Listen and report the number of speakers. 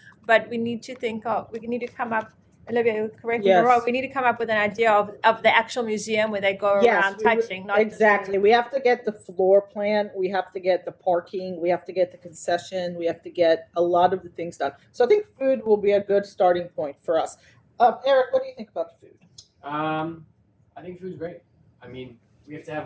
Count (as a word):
three